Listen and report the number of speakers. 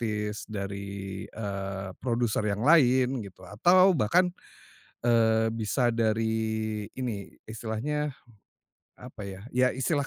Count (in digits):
1